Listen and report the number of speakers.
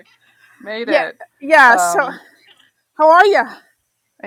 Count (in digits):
2